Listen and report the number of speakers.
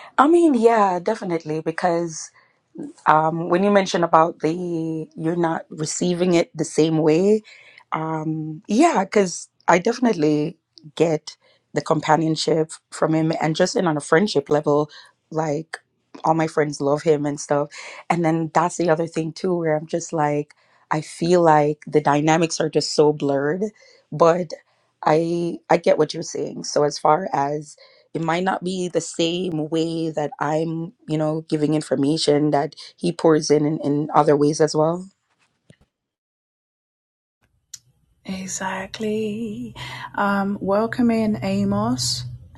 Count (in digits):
2